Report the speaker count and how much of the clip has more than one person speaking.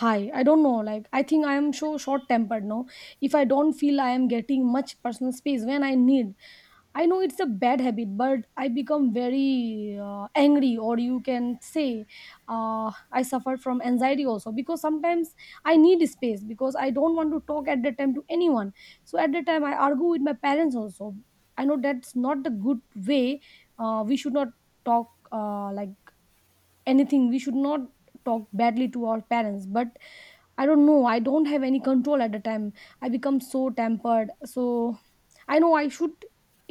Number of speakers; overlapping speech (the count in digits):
1, no overlap